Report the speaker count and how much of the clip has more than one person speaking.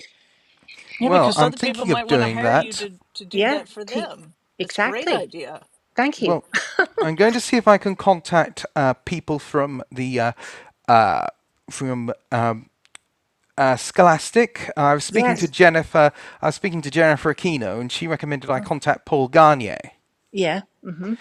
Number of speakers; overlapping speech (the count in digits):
3, about 18%